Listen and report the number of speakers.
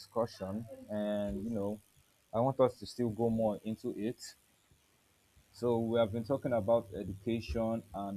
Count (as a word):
one